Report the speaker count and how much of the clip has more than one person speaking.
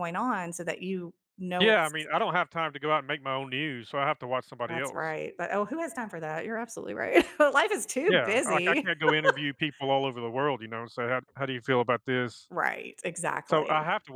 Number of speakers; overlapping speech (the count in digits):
2, about 11%